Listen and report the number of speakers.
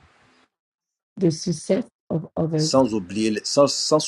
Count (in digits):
2